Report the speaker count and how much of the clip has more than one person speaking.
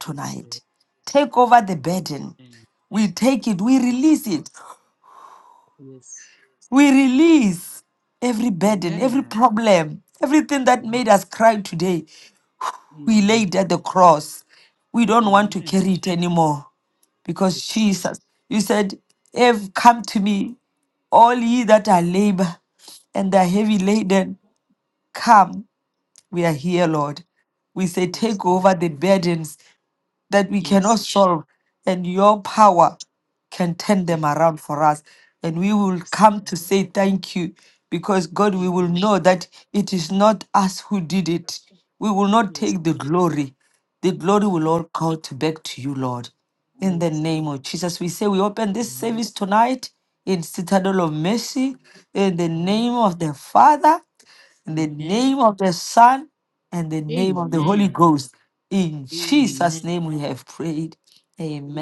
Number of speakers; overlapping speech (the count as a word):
two, about 17%